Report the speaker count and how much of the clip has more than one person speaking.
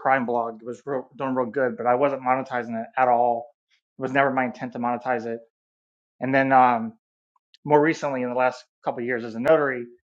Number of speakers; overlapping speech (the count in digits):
1, no overlap